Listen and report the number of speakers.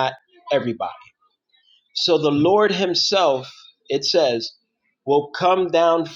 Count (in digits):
1